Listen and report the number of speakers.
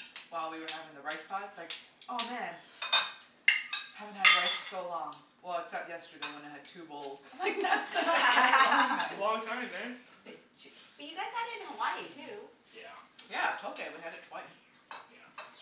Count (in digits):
3